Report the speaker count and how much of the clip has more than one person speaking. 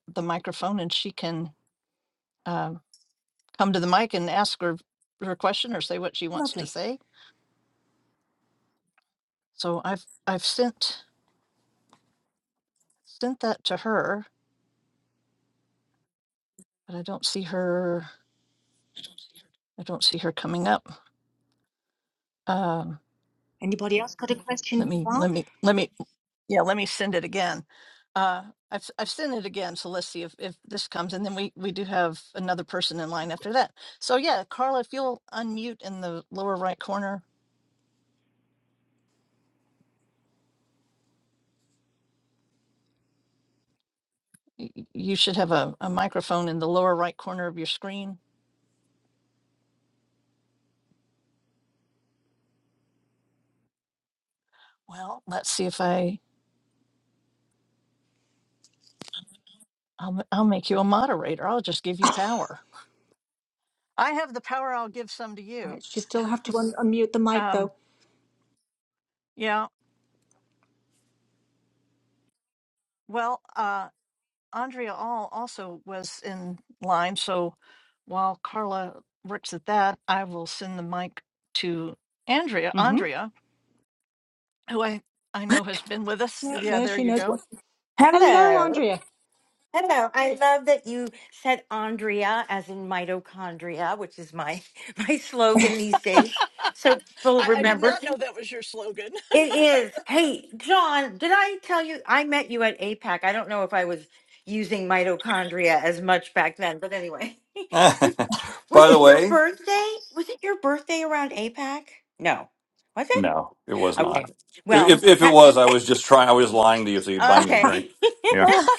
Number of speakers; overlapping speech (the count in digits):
4, about 6%